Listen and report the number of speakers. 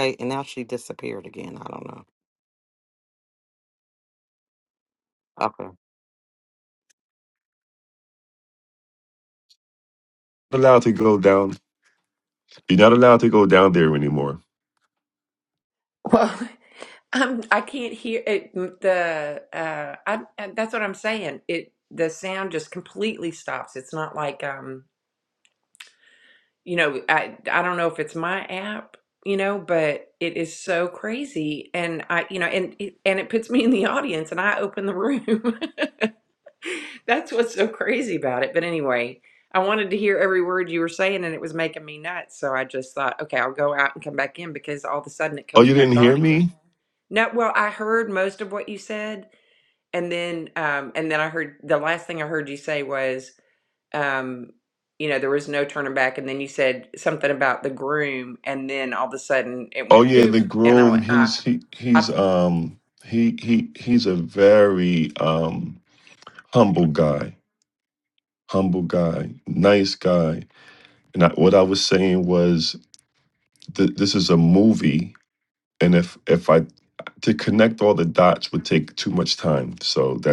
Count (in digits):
3